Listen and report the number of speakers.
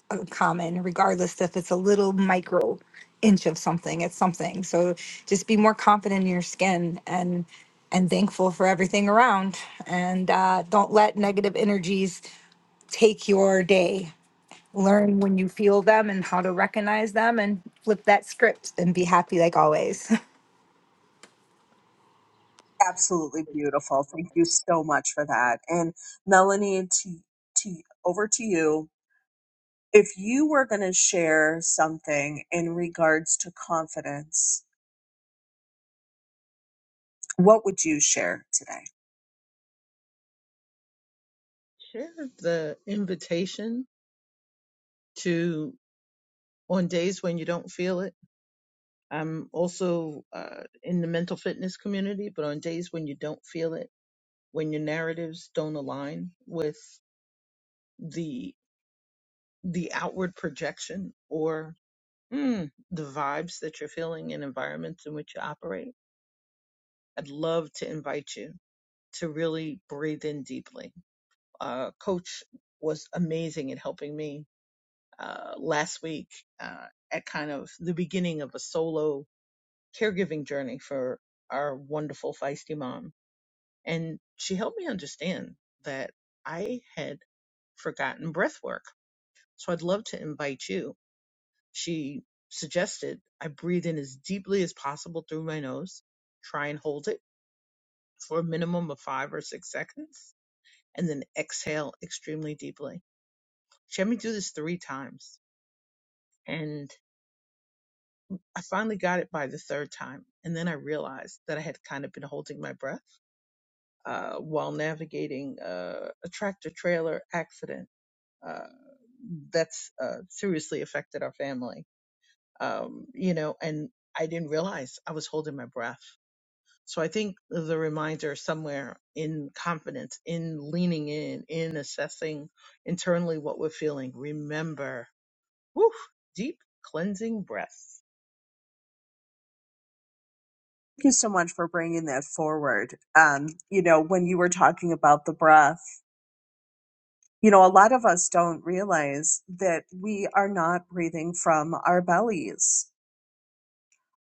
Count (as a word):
three